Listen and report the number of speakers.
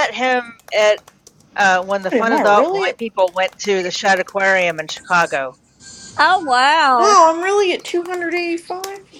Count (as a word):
three